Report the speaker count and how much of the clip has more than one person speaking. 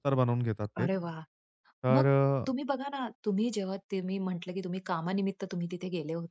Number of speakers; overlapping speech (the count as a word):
two, about 5%